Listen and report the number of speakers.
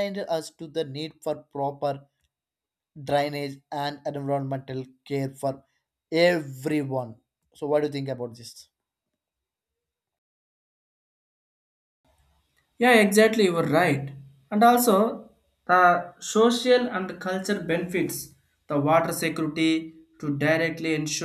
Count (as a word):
two